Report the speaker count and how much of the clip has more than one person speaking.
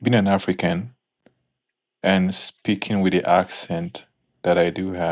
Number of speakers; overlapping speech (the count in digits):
1, no overlap